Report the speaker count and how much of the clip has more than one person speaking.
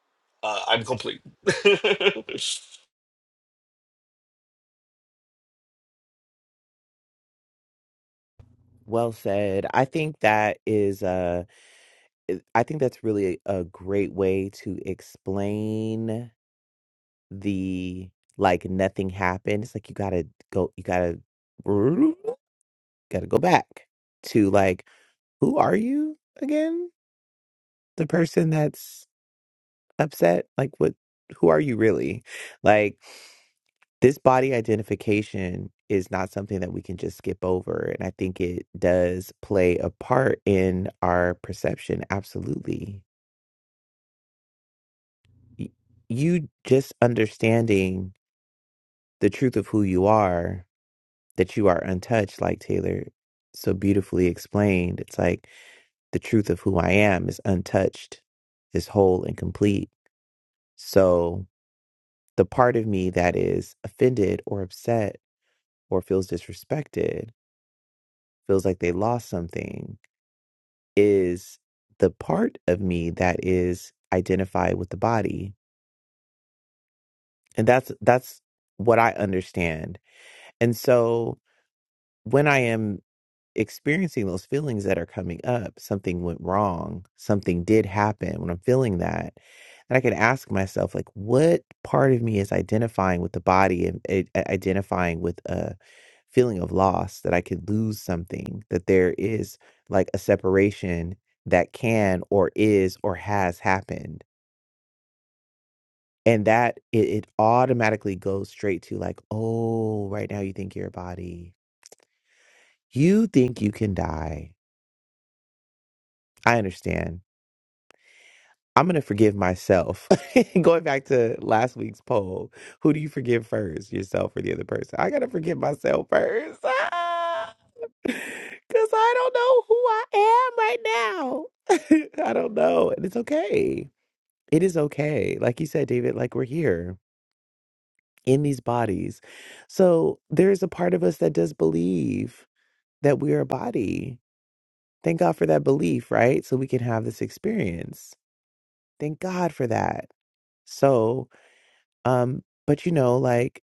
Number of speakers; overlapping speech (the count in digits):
2, no overlap